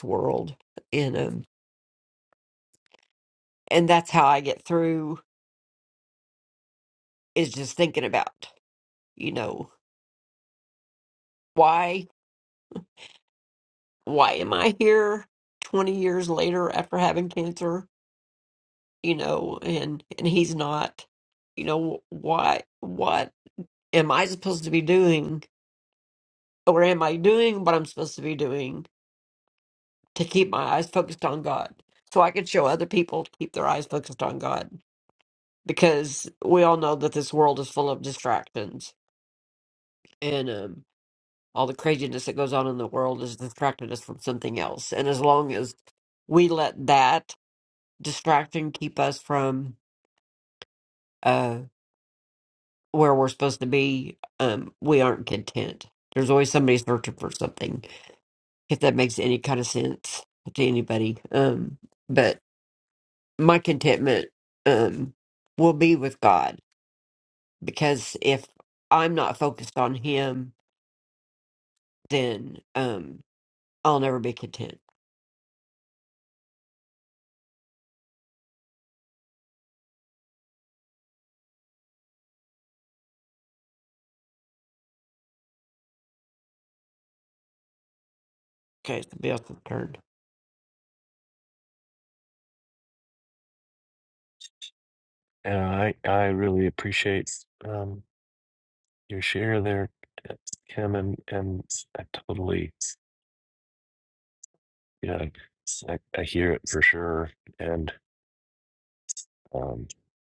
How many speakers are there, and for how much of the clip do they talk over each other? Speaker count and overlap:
two, no overlap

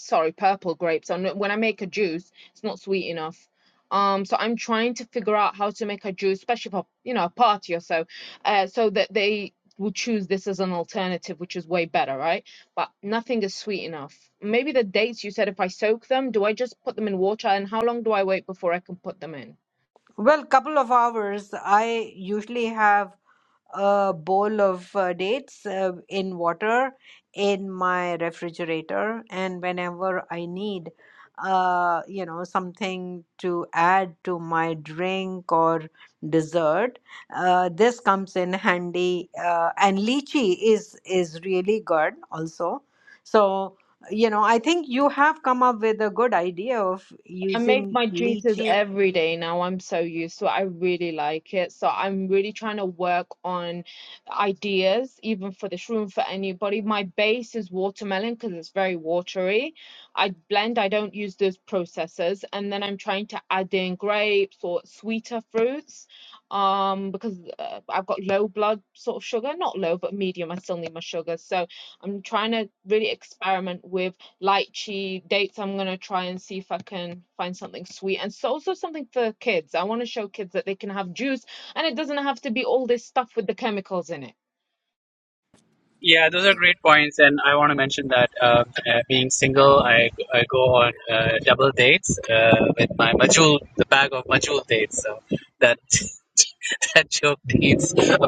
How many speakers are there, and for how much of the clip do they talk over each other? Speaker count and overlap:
three, about 1%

